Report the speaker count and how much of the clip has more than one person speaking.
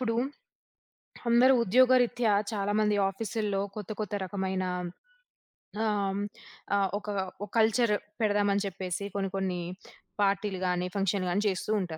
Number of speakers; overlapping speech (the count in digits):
1, no overlap